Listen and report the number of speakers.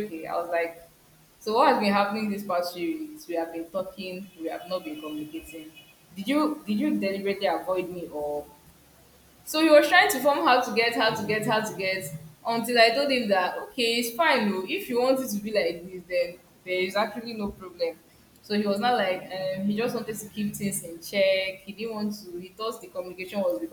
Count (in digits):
1